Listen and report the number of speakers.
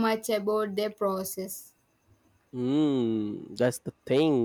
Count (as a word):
two